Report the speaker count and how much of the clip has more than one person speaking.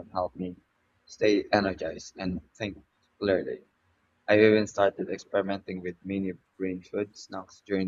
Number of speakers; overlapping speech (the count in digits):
1, no overlap